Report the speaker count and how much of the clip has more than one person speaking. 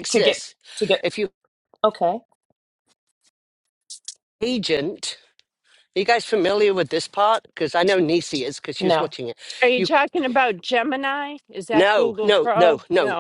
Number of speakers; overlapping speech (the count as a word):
three, about 17%